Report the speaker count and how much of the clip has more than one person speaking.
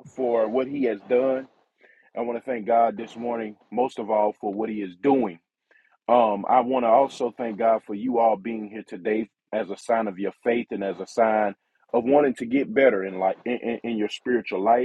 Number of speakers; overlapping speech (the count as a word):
one, no overlap